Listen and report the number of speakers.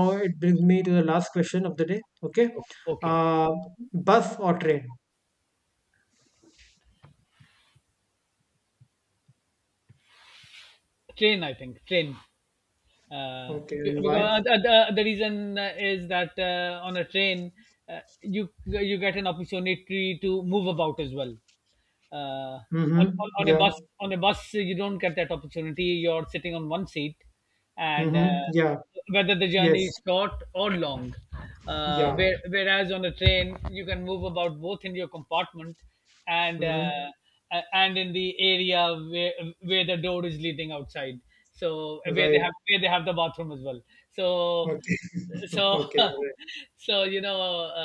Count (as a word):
two